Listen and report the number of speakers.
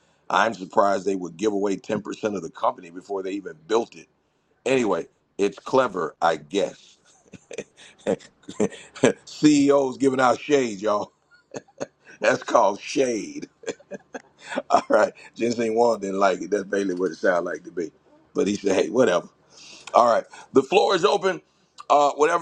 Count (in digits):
1